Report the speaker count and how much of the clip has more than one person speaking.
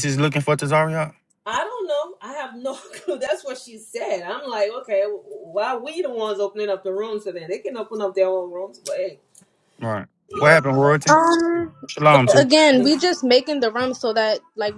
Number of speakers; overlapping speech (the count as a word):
three, about 5%